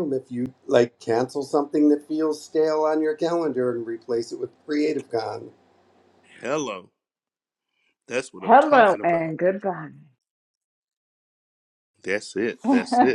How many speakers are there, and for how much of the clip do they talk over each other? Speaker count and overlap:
3, about 7%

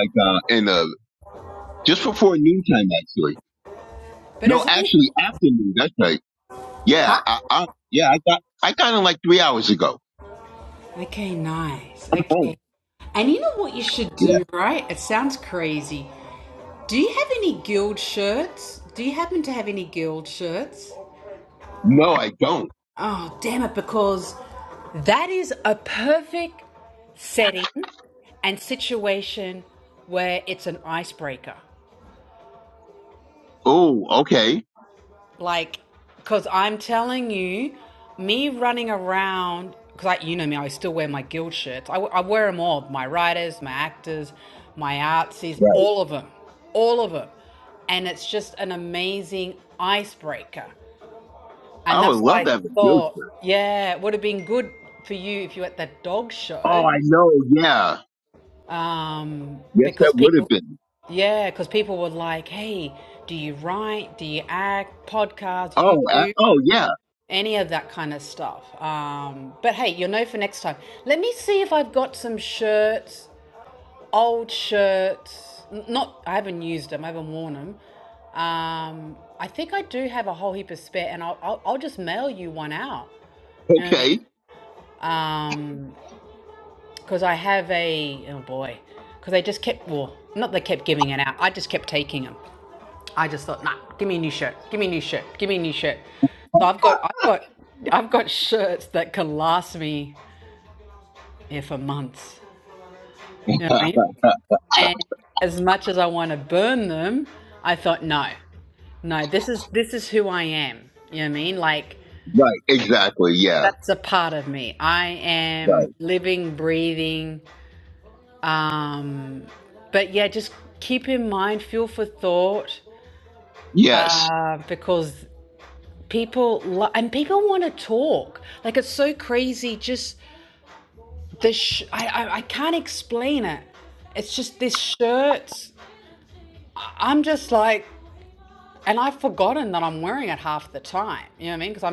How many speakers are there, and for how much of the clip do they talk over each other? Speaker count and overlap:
2, about 4%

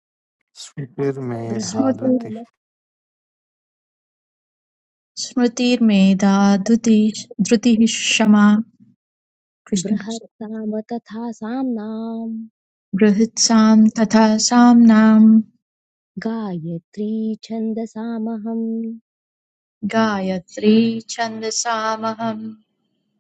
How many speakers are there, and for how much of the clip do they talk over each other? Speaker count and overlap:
3, about 6%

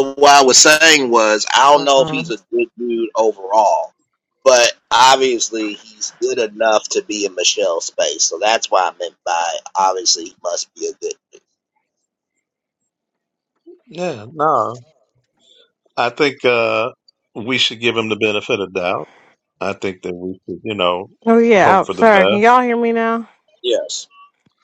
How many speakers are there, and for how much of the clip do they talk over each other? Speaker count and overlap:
3, about 5%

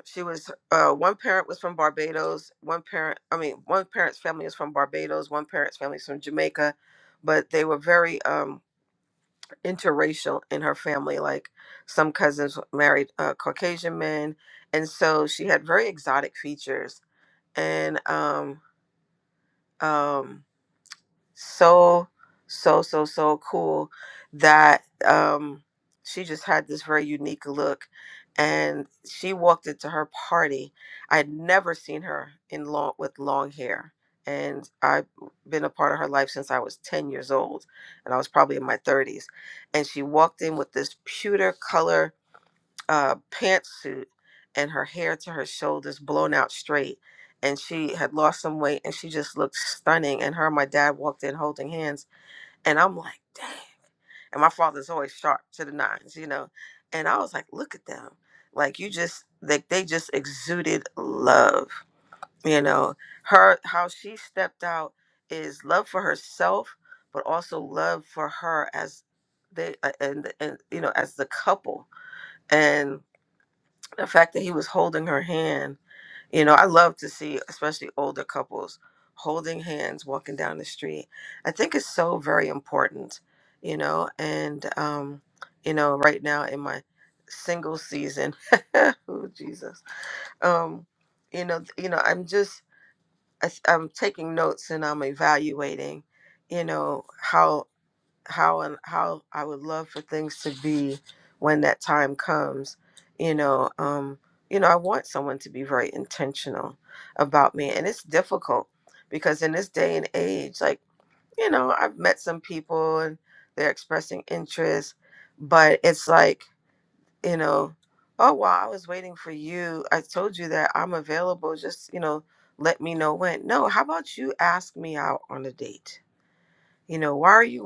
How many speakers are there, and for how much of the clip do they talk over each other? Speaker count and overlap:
1, no overlap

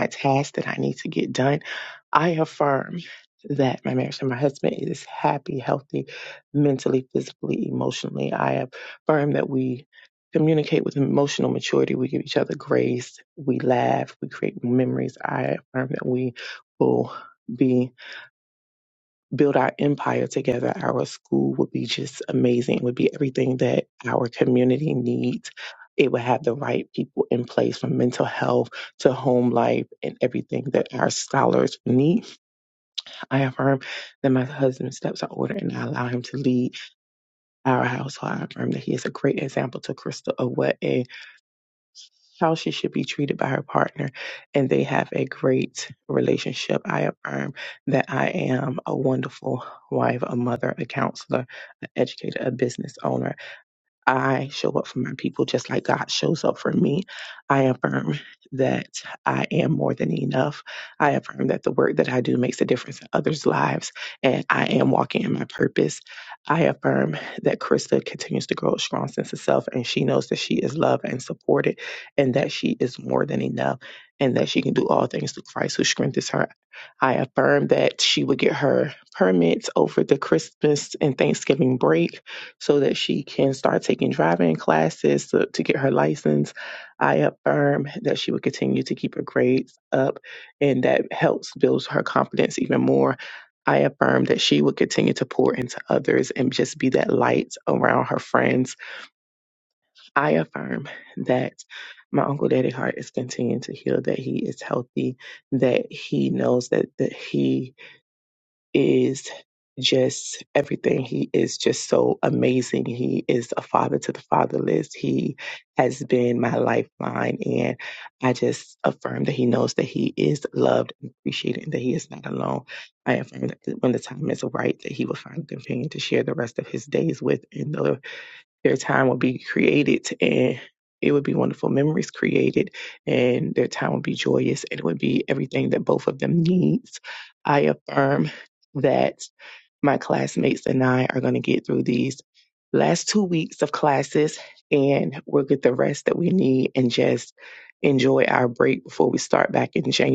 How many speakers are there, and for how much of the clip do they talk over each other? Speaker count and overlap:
1, no overlap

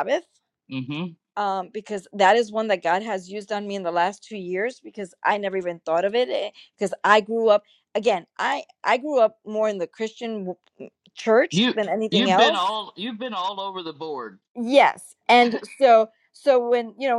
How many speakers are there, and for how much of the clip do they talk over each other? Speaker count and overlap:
2, about 4%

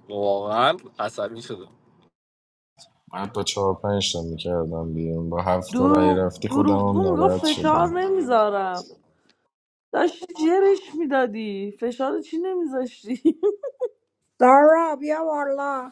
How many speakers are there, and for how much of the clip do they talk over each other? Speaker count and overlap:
4, about 14%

